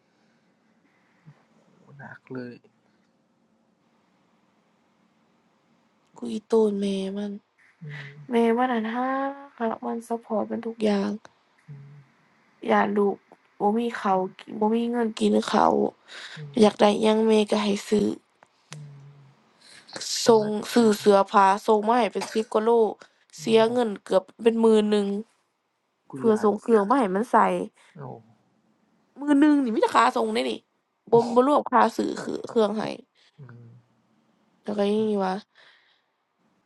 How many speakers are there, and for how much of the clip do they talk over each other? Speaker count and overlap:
2, about 2%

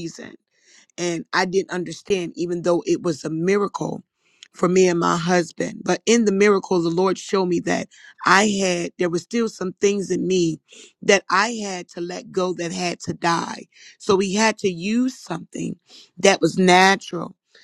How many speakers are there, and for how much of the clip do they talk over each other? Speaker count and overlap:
1, no overlap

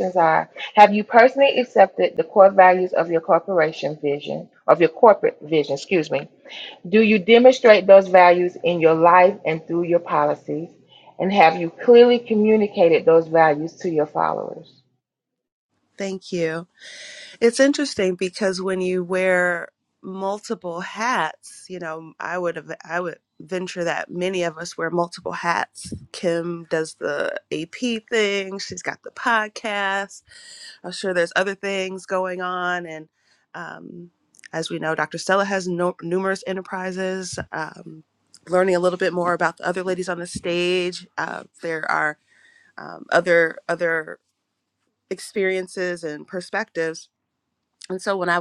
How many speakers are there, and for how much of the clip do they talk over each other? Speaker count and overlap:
2, no overlap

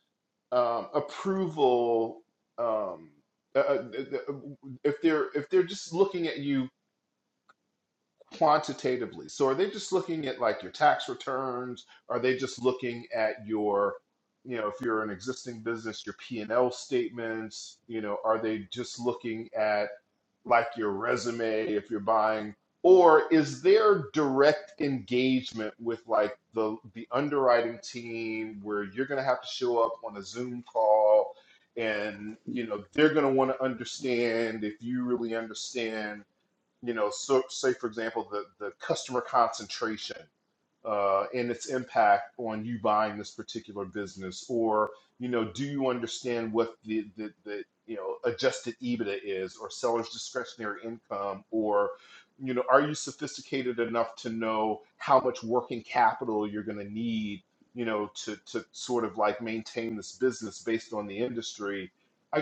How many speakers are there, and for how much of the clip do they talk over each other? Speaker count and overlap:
1, no overlap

